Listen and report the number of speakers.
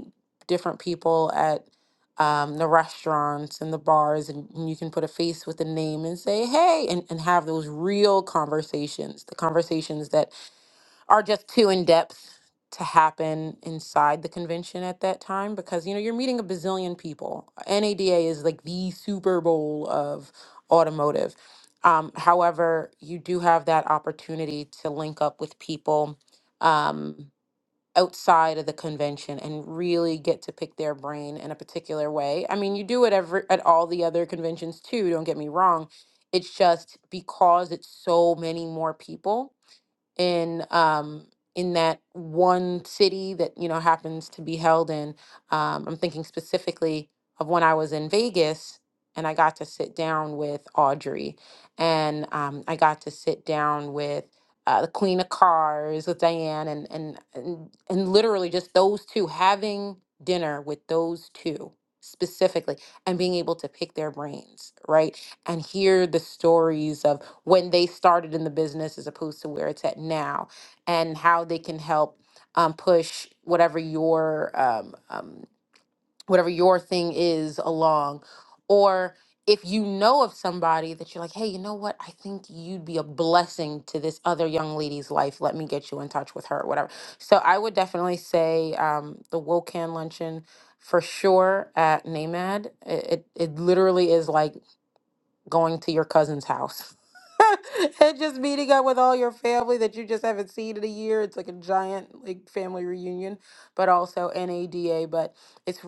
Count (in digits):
1